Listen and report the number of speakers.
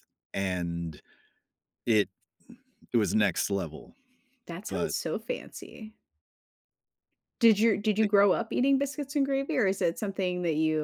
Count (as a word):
two